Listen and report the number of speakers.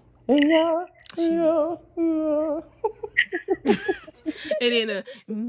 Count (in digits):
2